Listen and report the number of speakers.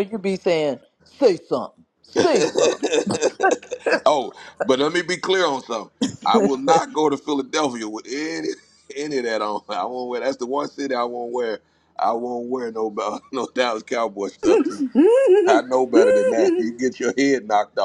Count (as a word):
three